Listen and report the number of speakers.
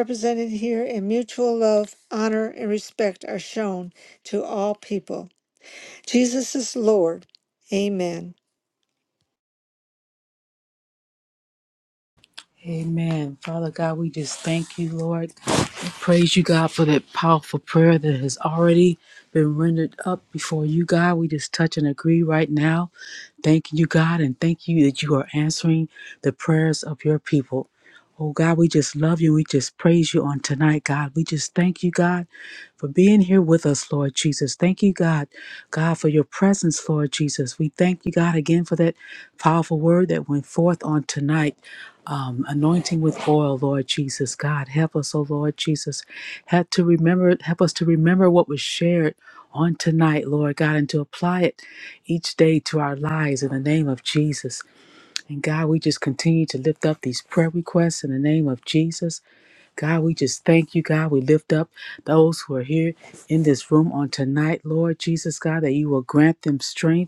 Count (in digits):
2